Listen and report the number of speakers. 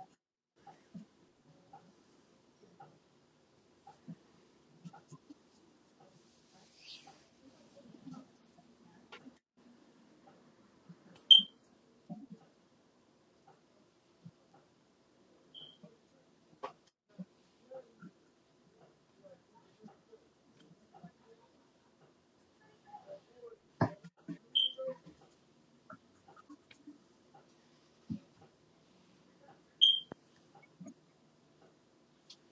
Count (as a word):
zero